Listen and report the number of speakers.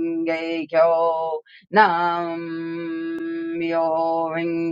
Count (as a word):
one